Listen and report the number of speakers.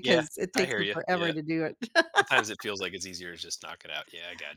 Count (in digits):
2